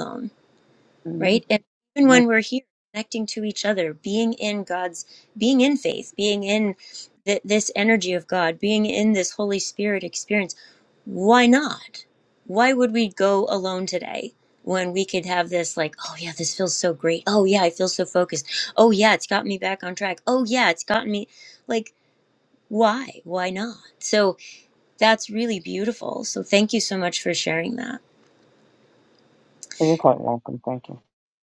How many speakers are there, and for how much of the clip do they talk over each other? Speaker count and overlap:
2, about 1%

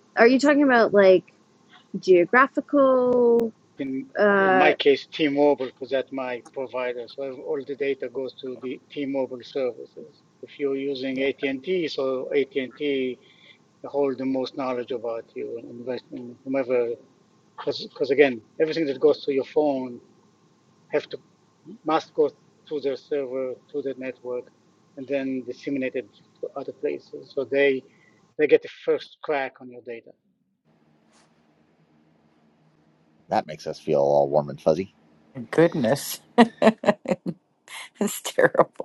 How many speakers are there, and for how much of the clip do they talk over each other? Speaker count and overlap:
4, about 1%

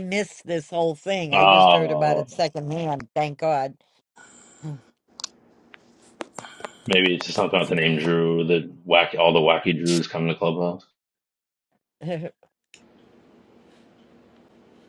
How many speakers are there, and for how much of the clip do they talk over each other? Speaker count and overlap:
2, about 6%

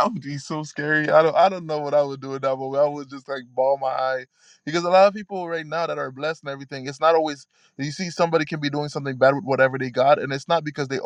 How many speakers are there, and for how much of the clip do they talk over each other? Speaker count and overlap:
1, no overlap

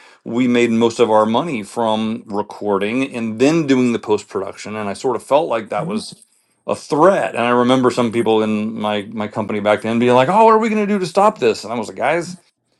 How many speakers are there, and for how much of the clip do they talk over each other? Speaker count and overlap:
1, no overlap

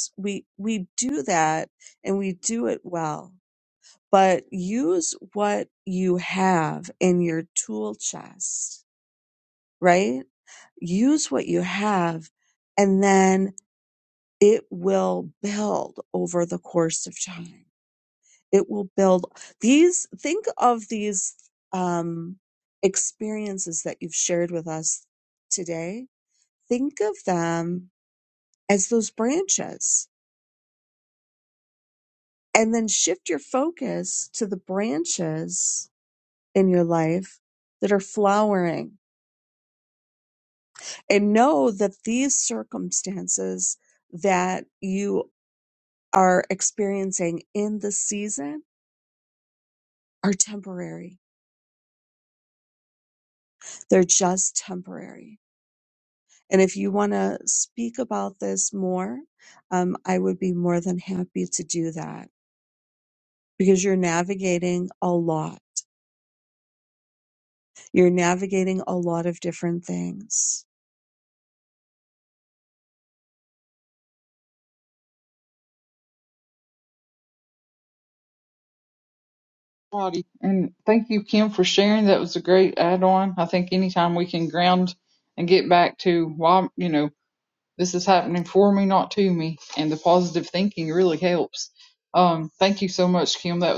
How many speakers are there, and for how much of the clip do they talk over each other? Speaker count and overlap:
2, no overlap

